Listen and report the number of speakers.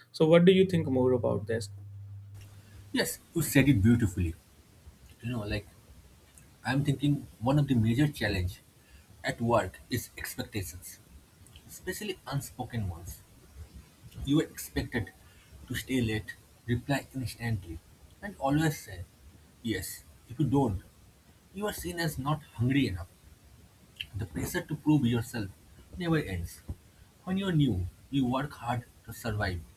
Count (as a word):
two